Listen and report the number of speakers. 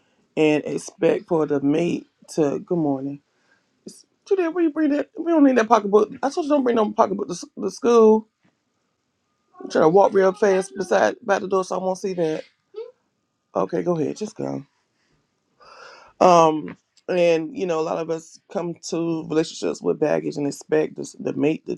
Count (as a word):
one